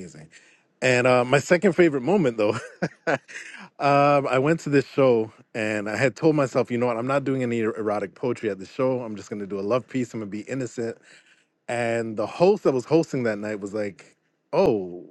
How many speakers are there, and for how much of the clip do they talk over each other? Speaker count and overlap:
one, no overlap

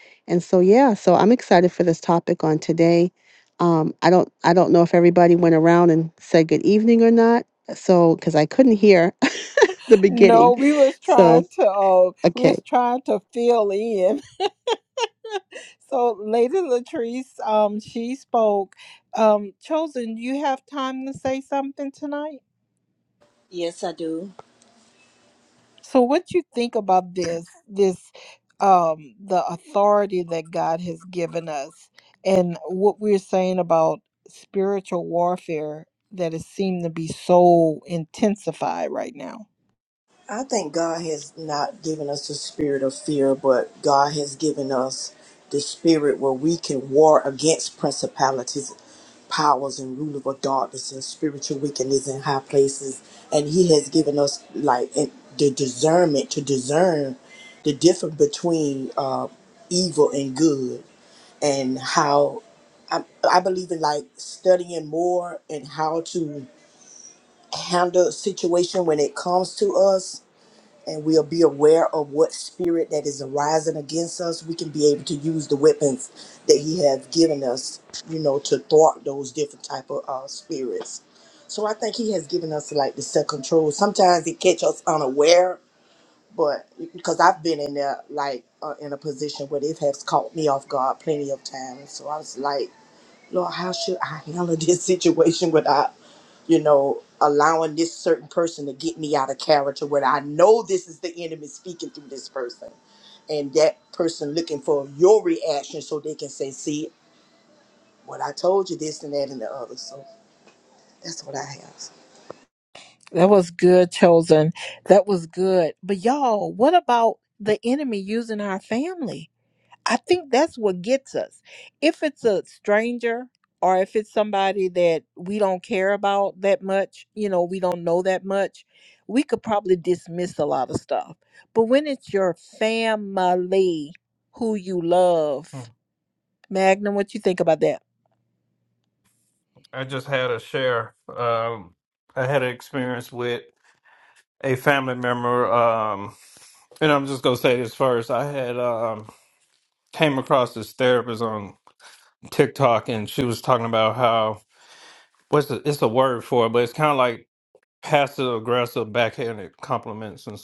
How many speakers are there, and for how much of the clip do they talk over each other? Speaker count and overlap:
four, about 1%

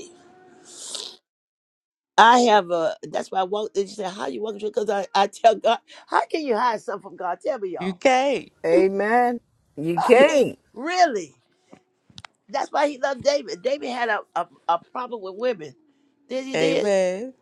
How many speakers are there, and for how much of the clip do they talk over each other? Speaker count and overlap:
three, about 6%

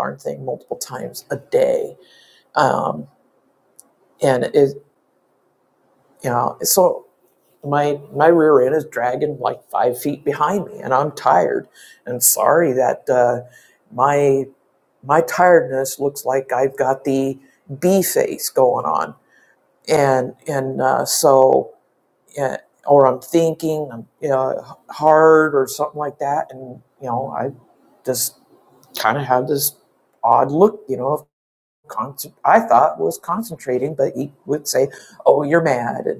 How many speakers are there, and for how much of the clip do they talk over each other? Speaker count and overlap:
one, no overlap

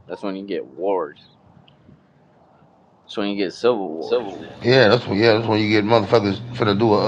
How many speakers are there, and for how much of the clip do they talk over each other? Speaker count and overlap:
two, no overlap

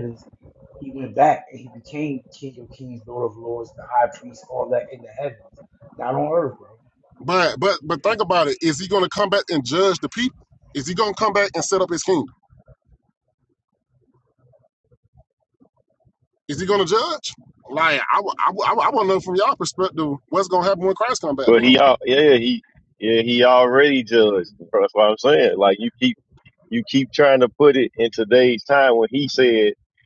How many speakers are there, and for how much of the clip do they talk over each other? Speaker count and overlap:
three, about 1%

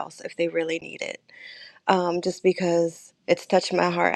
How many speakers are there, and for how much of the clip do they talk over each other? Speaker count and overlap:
one, no overlap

